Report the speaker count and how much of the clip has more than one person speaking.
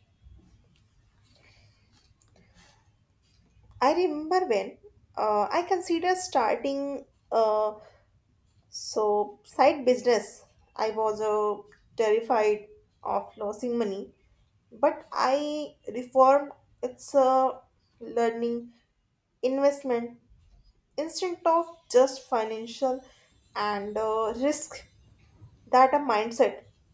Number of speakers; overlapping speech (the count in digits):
1, no overlap